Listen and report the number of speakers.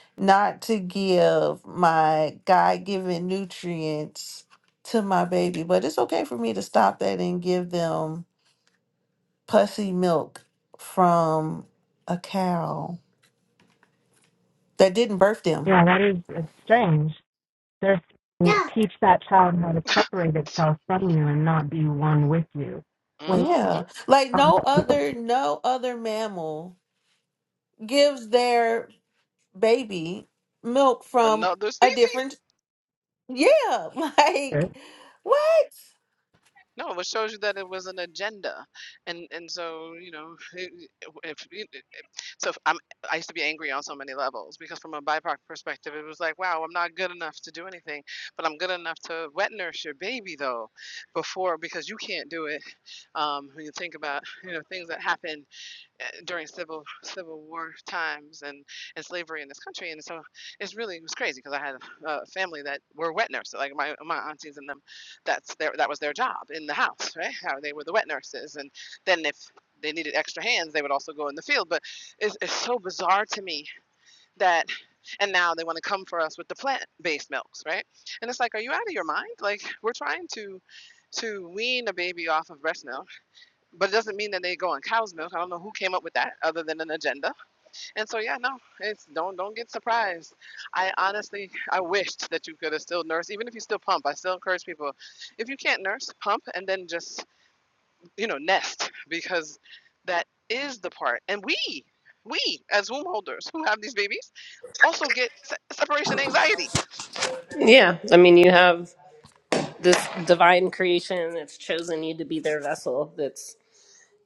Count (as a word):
four